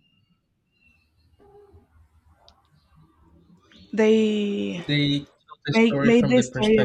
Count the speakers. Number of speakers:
2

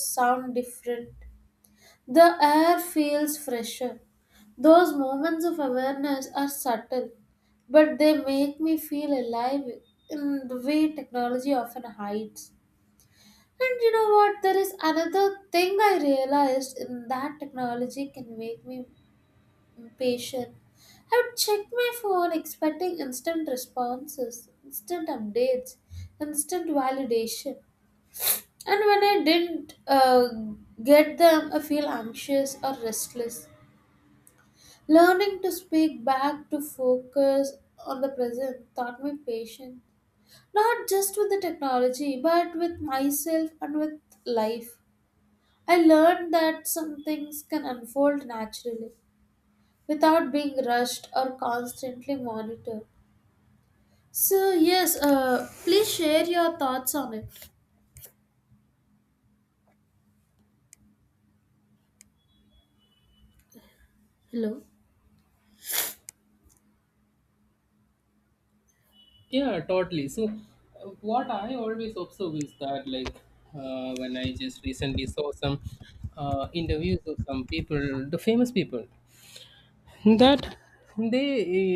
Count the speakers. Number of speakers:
2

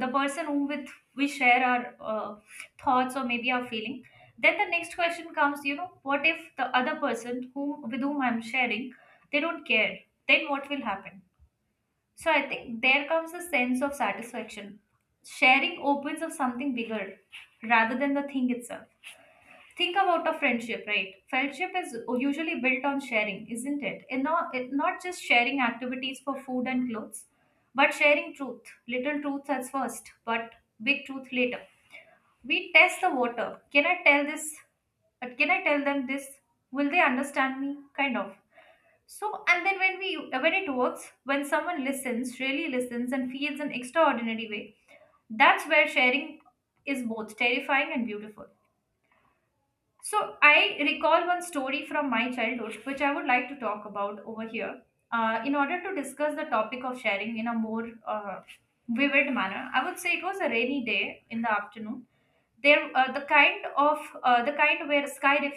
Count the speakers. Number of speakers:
1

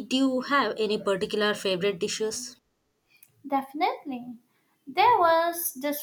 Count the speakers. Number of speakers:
2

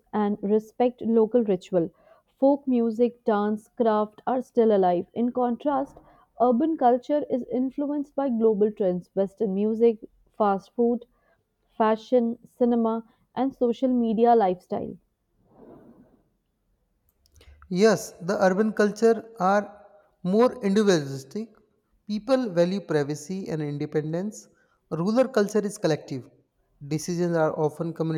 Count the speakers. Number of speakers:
2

